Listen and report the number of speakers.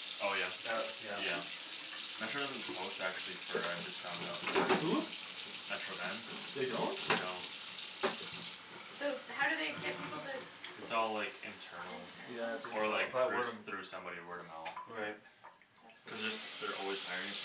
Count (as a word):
three